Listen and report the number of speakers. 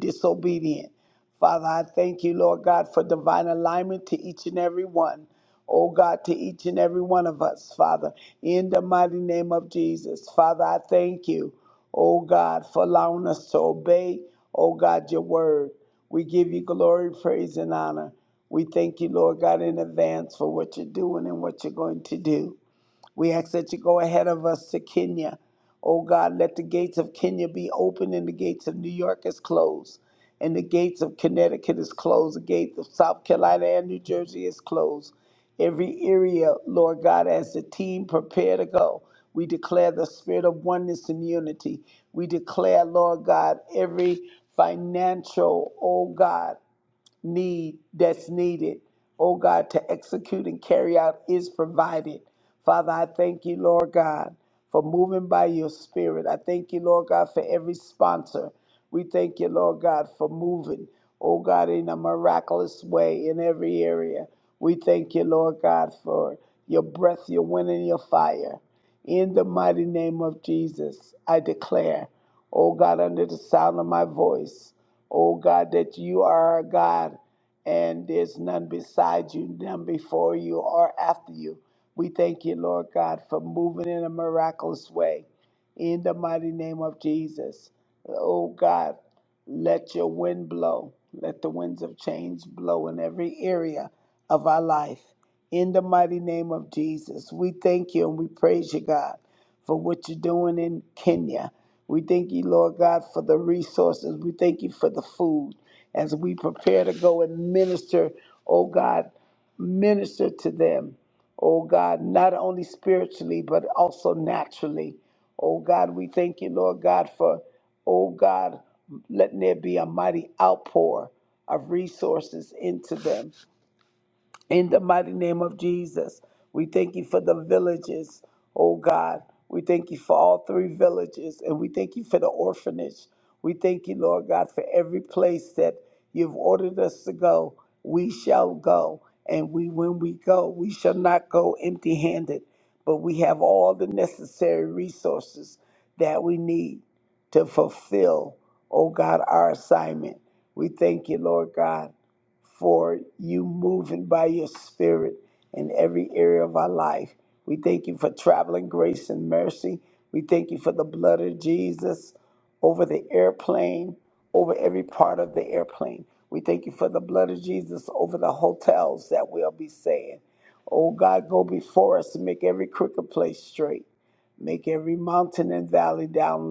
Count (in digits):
1